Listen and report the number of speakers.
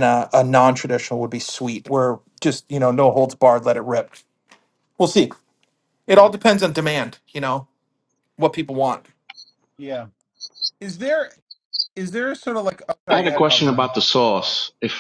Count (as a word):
three